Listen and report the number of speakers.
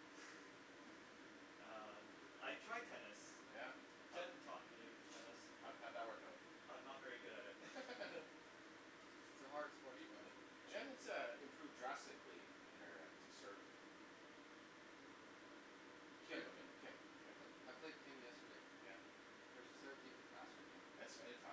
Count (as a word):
three